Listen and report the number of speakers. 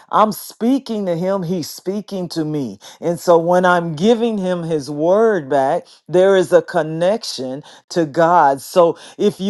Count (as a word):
one